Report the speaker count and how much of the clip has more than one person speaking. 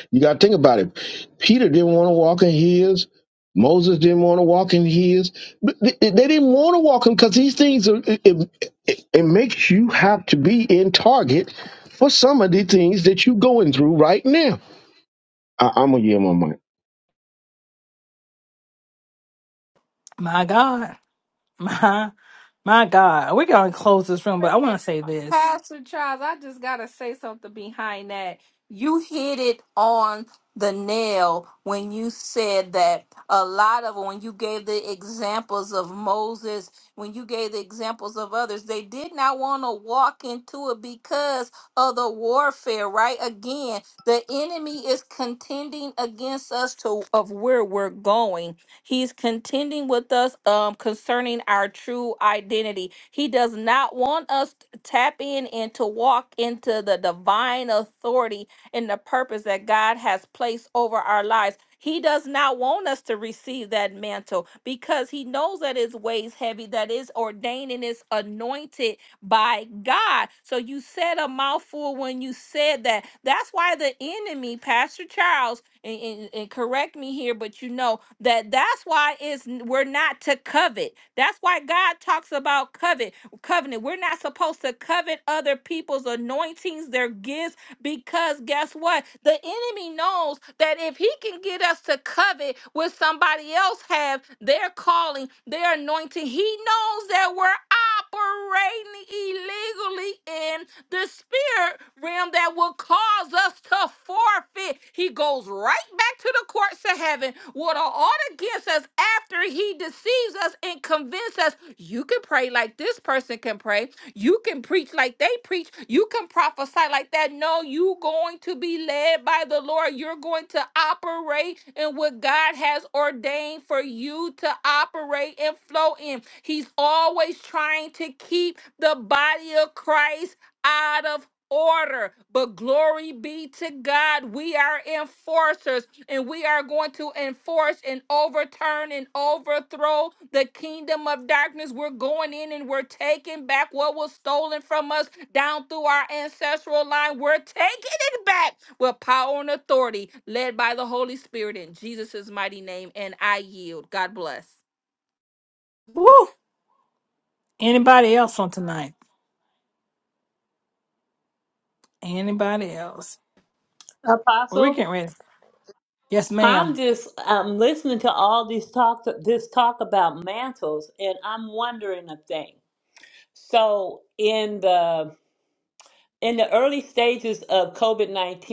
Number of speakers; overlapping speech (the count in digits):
4, about 1%